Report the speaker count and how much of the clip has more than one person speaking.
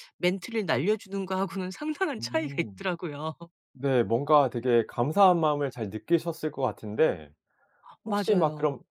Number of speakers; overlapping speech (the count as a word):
two, about 13%